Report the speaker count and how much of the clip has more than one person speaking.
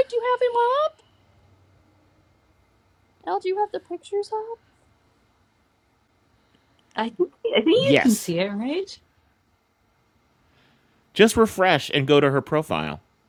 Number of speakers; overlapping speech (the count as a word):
three, about 2%